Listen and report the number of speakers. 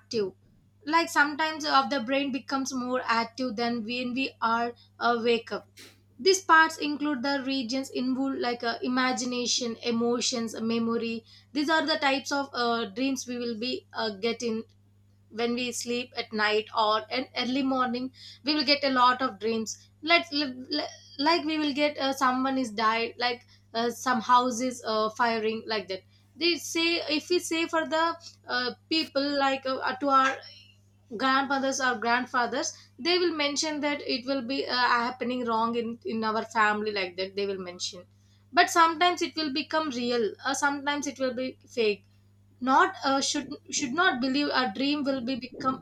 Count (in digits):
1